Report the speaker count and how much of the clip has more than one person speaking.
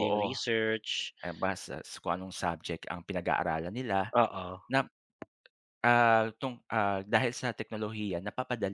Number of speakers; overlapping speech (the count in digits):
2, about 3%